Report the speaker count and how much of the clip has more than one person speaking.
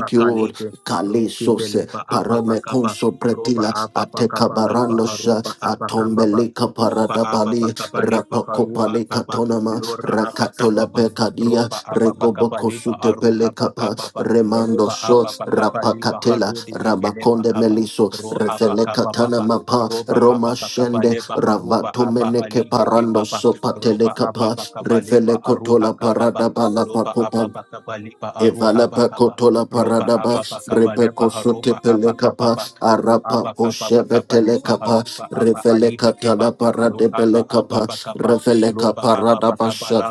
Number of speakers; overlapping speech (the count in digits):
2, about 88%